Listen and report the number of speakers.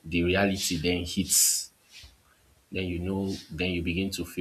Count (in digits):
1